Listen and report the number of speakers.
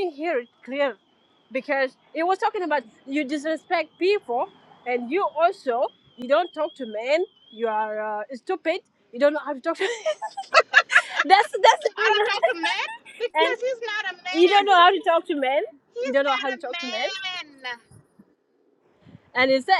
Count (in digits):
2